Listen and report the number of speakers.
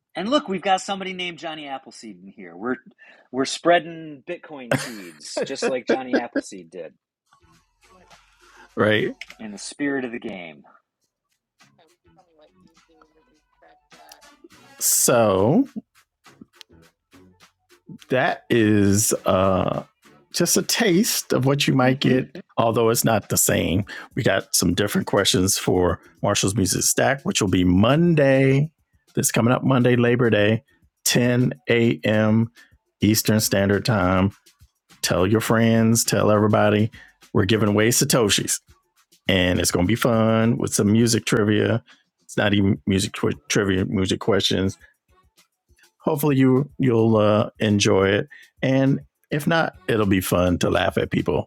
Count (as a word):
two